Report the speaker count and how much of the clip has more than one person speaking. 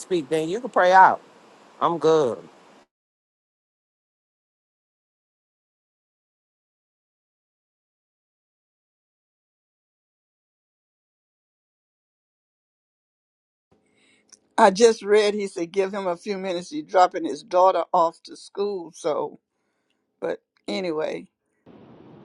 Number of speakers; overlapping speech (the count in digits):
2, no overlap